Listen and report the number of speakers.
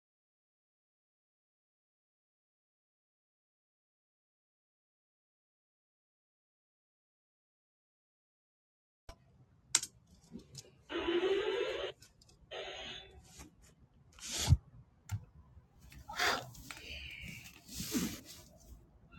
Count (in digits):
0